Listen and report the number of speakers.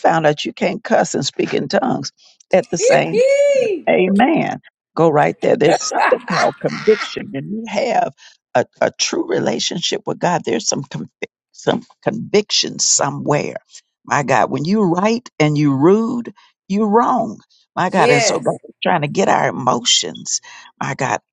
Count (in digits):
2